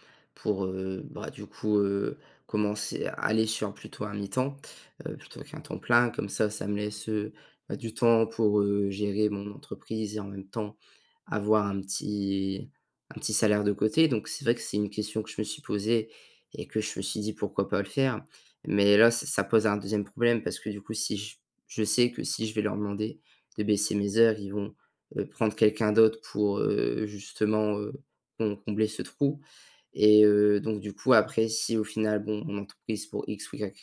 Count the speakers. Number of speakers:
one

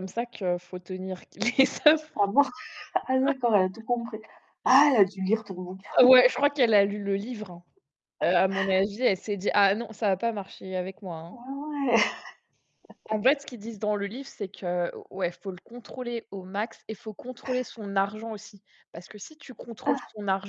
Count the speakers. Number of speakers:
two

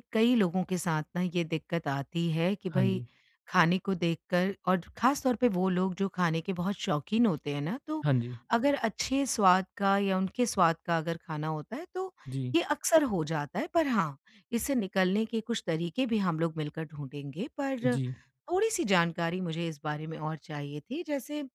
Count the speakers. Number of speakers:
two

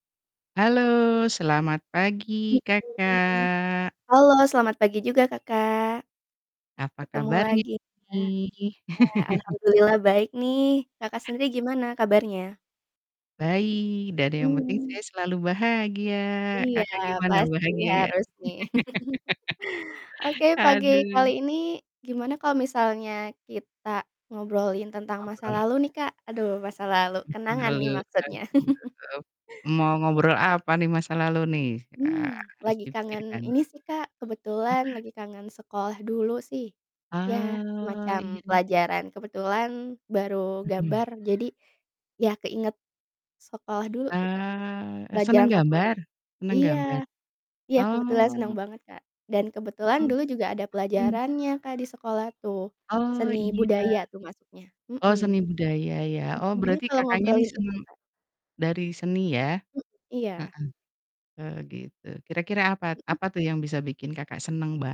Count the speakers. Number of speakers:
two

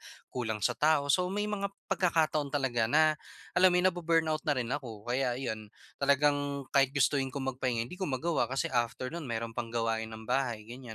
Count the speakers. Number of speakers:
one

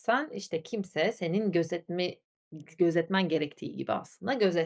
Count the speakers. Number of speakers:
one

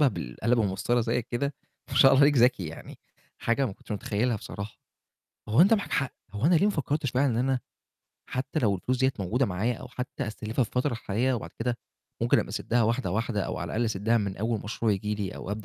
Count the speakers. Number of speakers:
one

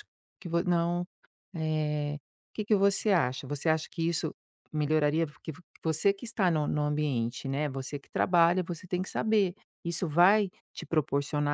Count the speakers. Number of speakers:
one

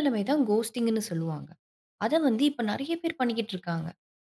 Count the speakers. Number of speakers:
one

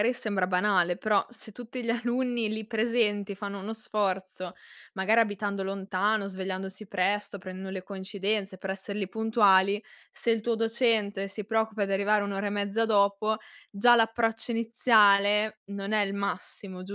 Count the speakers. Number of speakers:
one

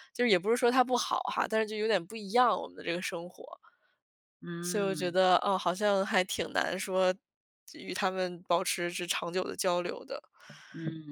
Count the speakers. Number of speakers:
two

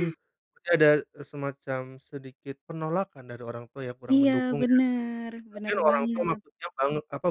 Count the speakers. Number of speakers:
two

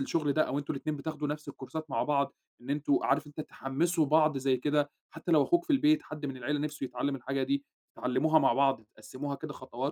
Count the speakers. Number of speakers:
one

